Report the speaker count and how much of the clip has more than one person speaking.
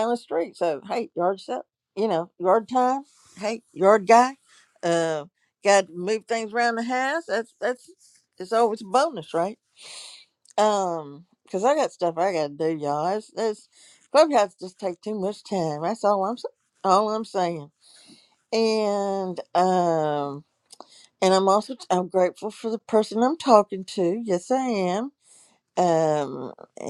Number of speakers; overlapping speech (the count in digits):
1, no overlap